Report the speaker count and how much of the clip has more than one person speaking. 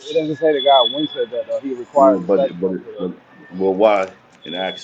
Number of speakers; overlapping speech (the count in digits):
2, about 23%